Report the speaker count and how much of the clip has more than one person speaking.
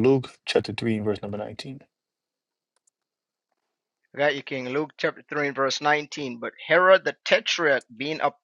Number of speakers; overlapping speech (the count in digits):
2, no overlap